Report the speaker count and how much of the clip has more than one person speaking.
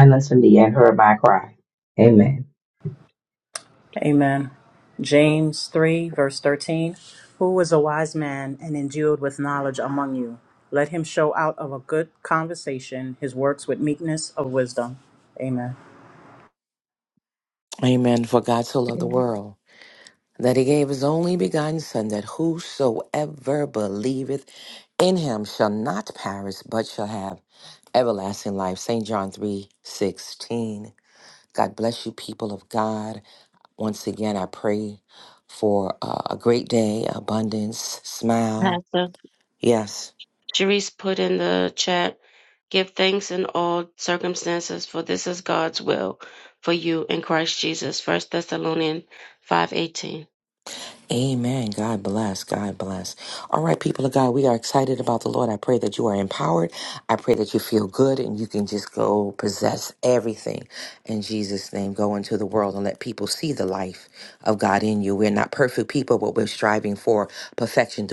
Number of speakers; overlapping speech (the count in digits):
4, about 1%